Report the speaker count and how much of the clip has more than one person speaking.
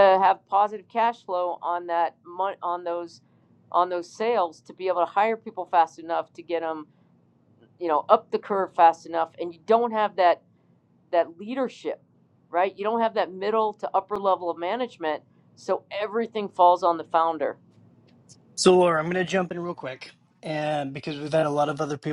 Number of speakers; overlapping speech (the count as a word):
two, no overlap